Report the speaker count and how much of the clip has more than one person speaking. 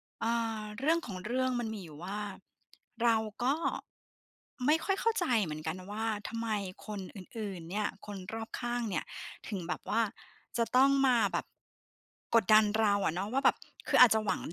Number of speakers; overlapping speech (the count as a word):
one, no overlap